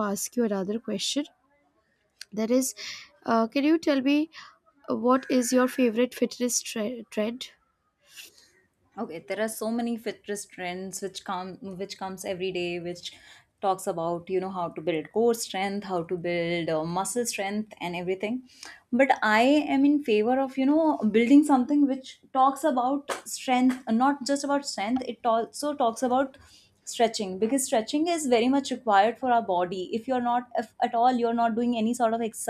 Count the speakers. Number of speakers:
2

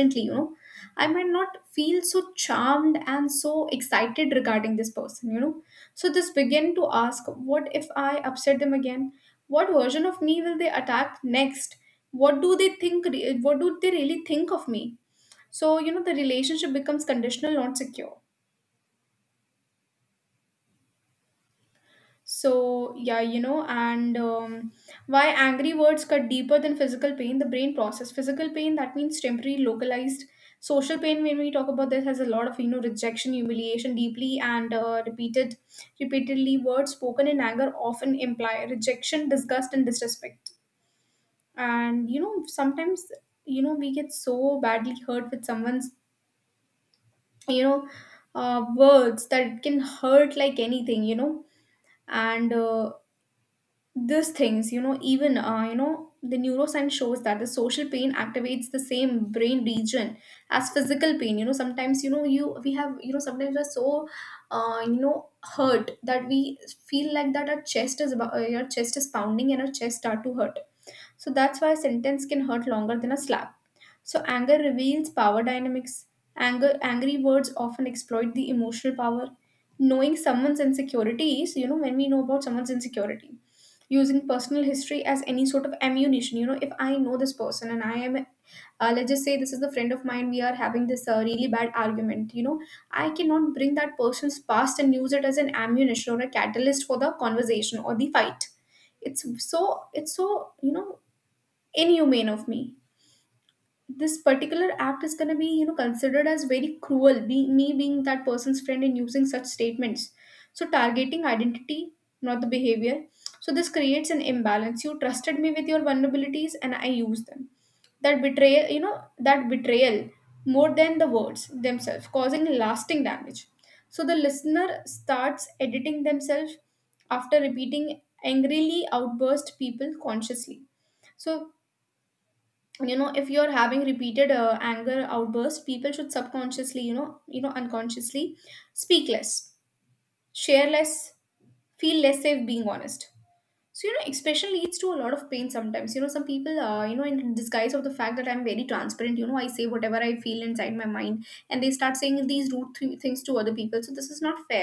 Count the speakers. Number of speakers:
1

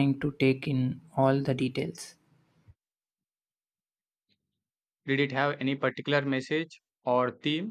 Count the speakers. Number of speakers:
2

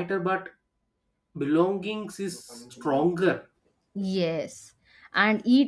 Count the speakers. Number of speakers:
2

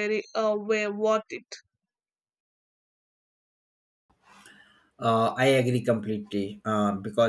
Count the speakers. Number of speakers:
2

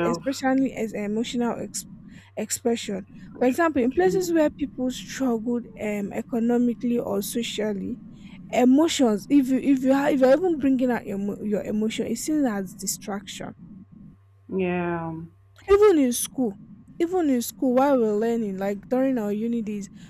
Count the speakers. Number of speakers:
2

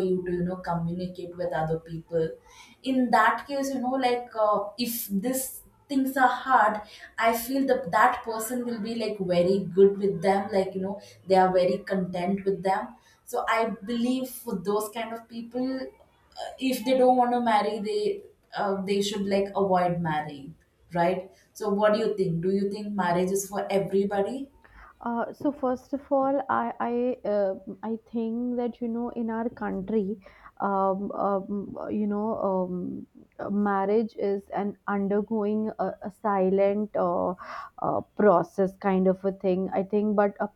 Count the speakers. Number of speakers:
2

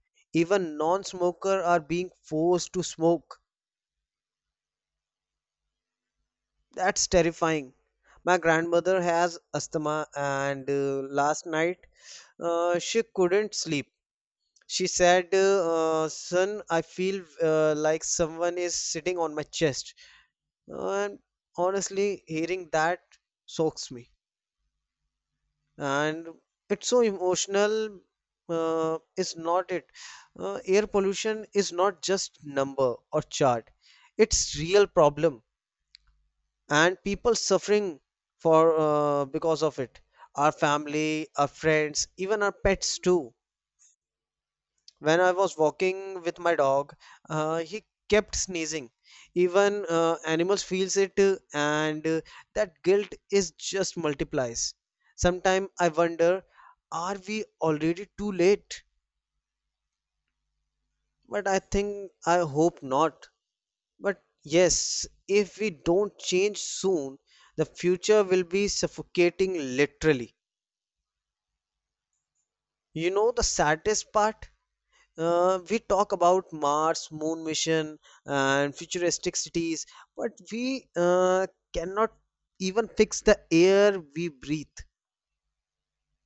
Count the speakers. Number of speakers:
1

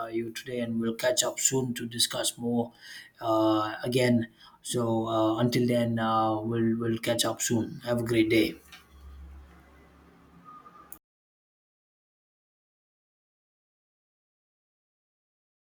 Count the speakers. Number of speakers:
1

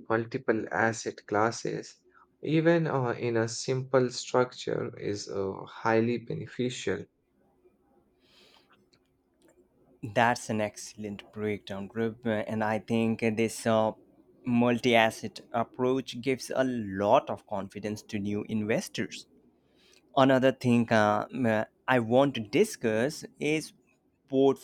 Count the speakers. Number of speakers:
2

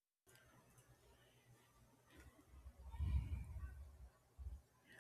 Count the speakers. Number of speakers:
0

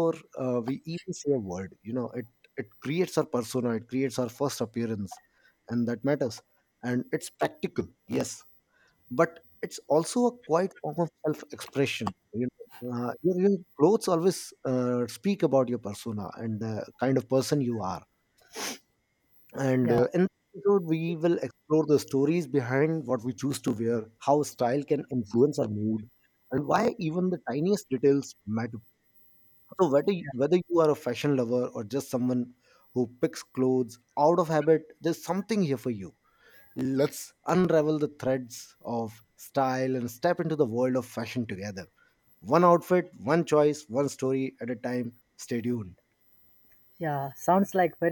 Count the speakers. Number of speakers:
2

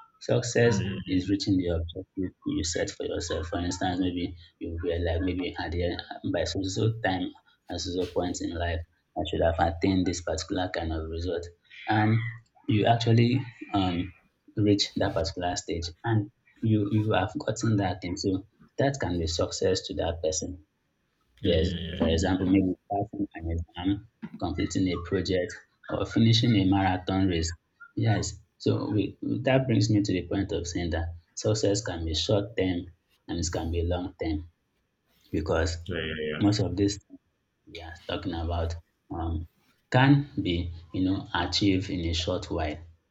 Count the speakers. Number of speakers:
2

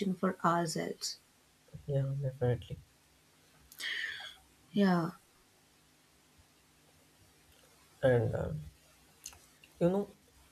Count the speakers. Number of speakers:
2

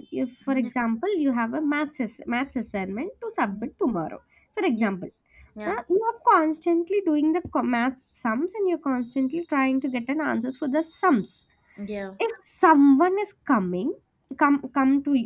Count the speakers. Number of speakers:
2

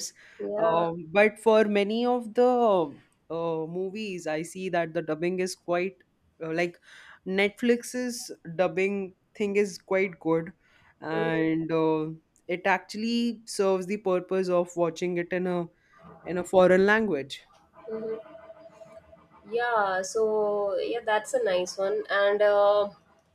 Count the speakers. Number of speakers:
2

